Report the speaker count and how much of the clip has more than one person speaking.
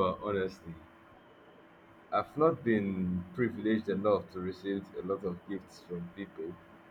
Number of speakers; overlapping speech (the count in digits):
1, no overlap